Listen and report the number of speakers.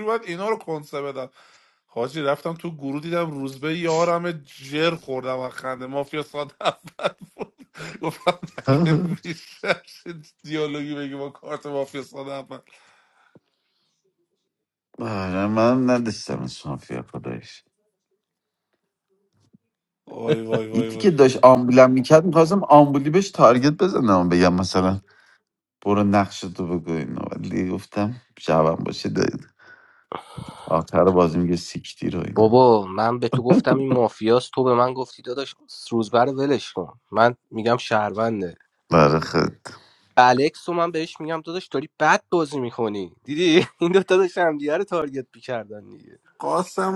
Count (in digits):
3